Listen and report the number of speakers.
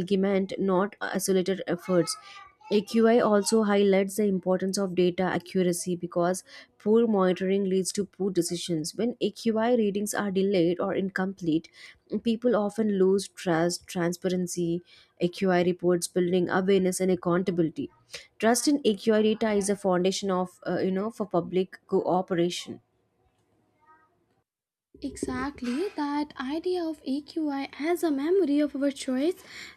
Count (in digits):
2